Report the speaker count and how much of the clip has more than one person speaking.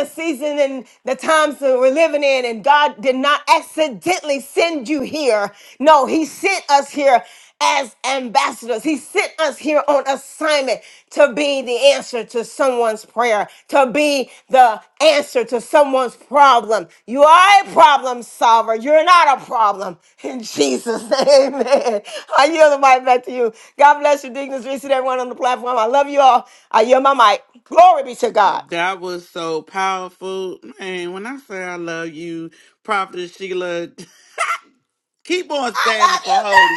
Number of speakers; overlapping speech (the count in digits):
2, about 3%